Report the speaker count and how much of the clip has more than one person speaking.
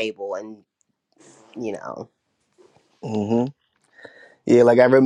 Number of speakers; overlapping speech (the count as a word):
two, no overlap